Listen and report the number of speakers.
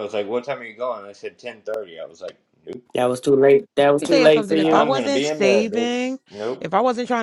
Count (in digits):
3